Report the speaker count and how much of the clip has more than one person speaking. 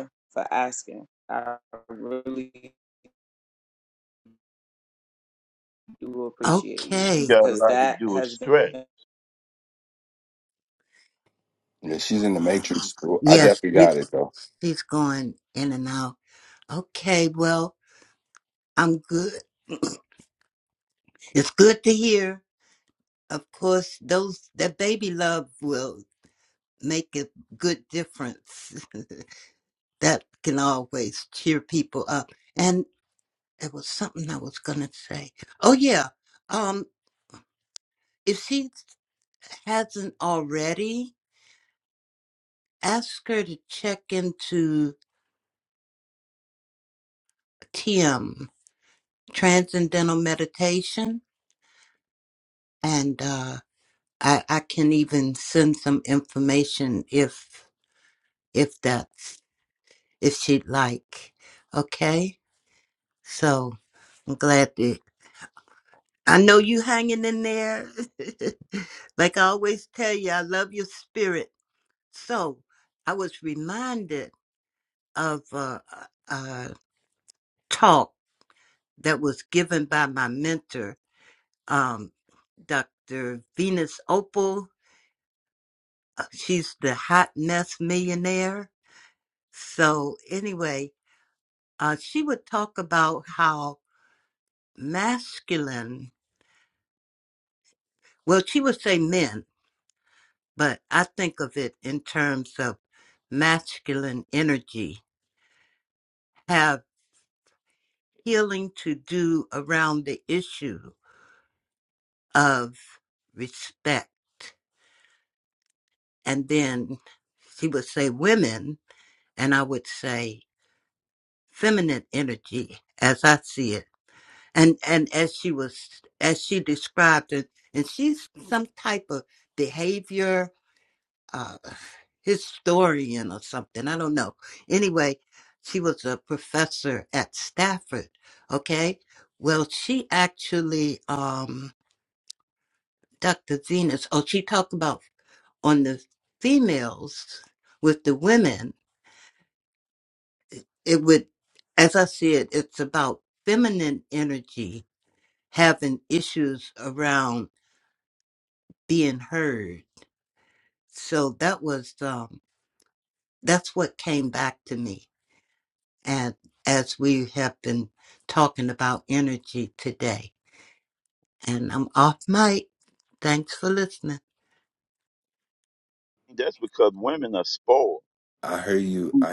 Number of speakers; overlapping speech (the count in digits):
4, about 2%